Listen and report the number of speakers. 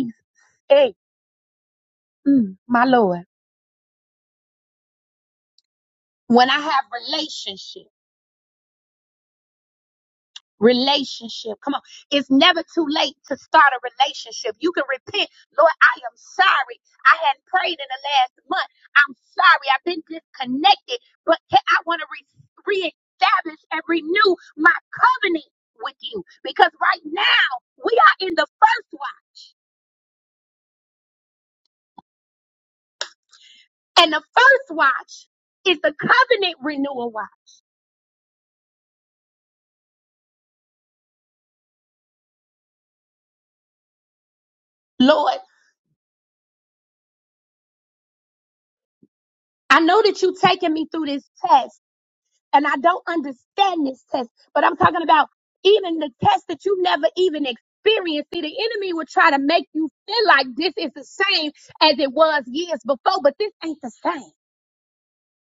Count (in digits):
1